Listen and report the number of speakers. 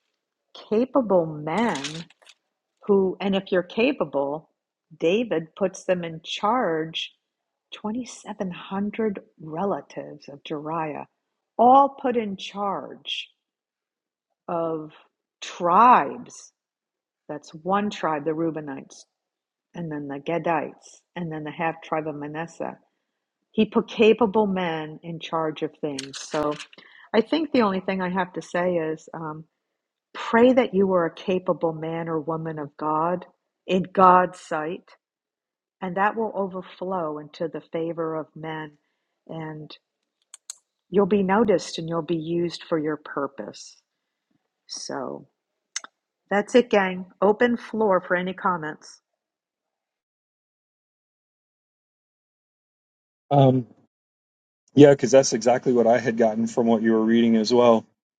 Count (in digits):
2